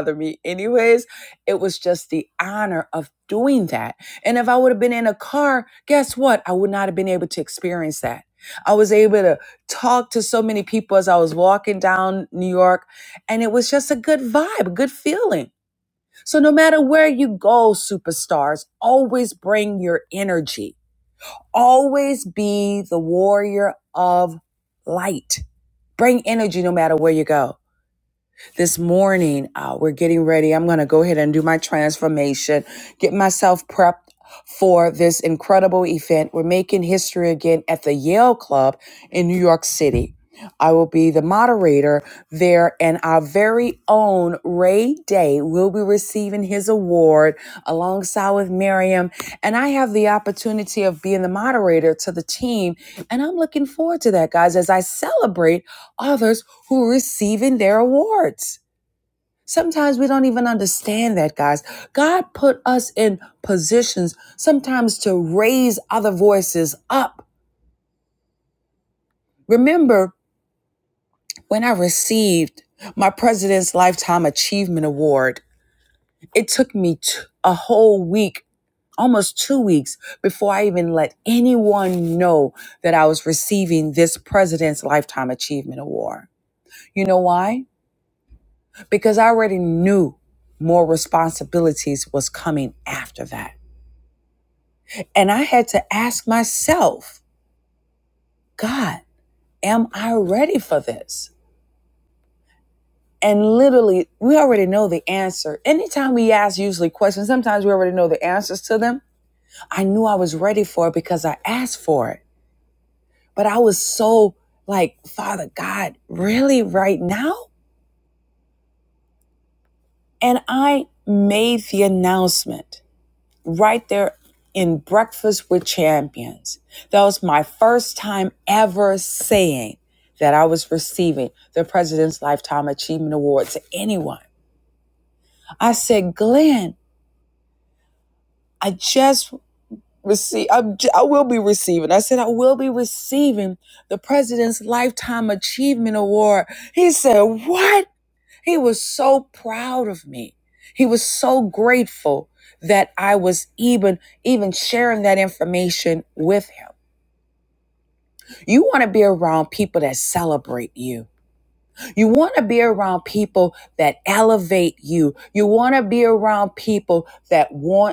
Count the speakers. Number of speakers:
one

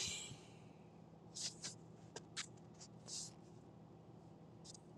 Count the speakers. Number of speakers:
zero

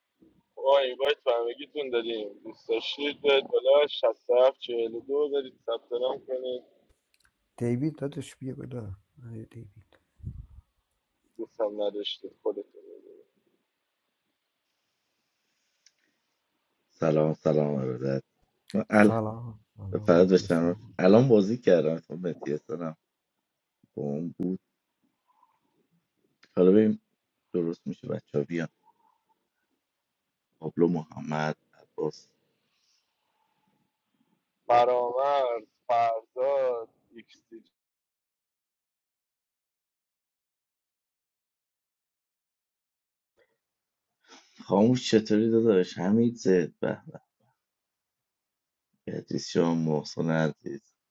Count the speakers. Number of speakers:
three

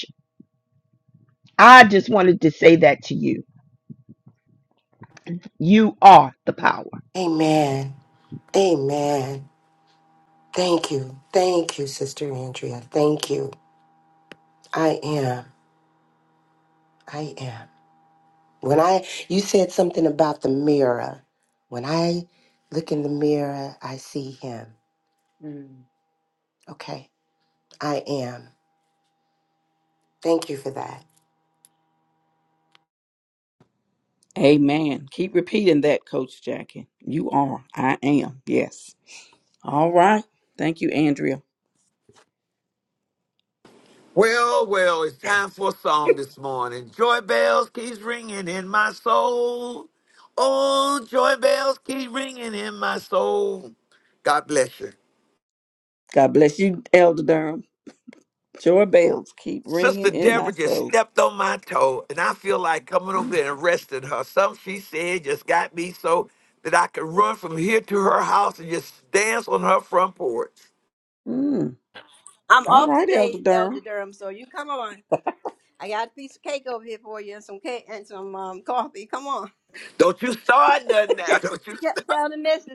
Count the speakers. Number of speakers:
five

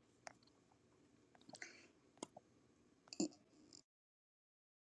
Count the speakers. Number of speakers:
zero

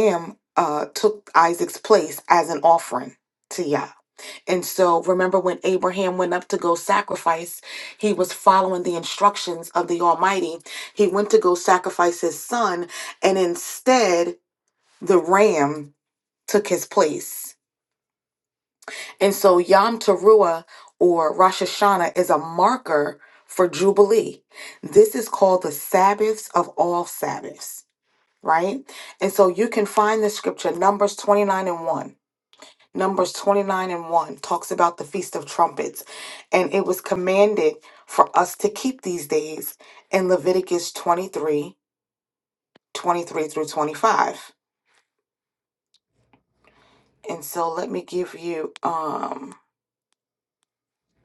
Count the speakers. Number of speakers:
one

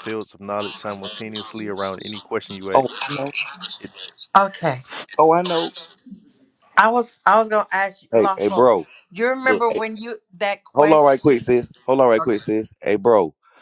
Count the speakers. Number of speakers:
three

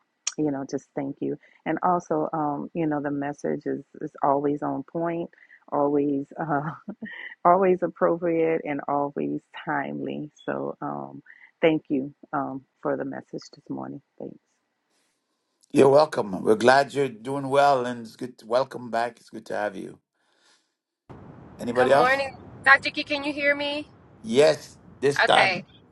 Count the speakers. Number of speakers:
three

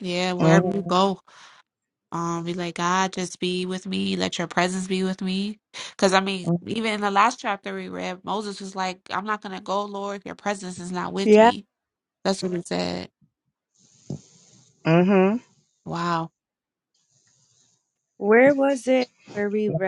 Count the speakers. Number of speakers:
three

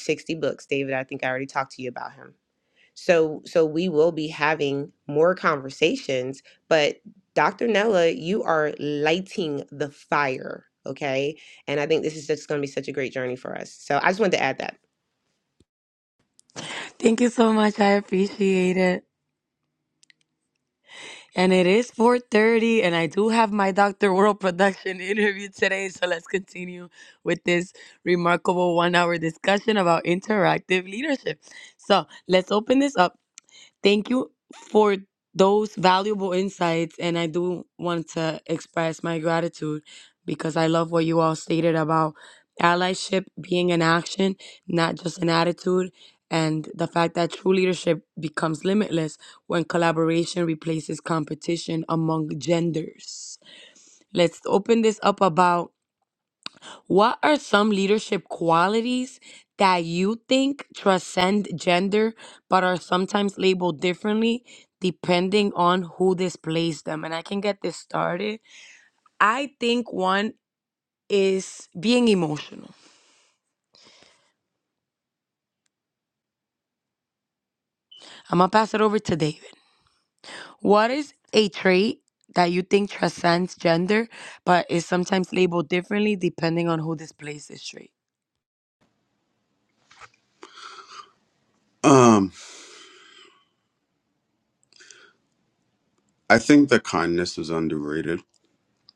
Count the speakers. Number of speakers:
three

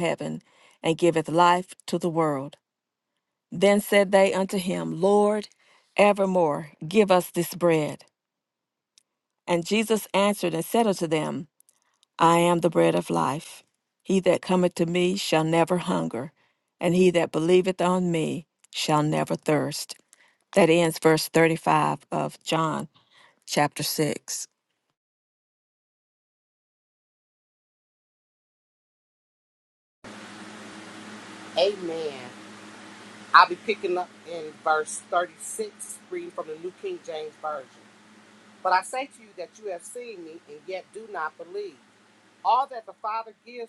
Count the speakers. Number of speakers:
two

